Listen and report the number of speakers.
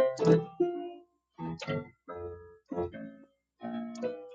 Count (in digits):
0